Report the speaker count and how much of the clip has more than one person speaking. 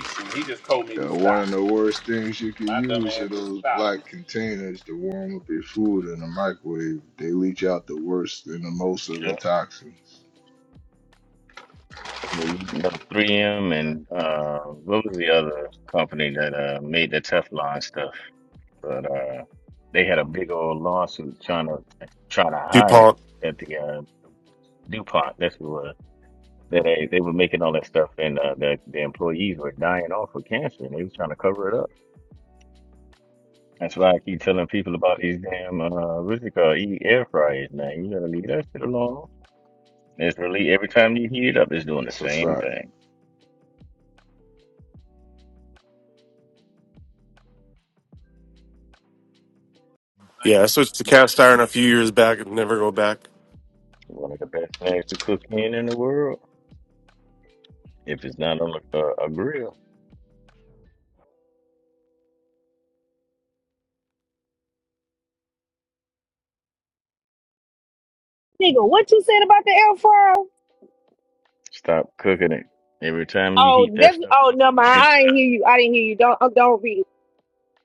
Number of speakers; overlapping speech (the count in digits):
5, about 6%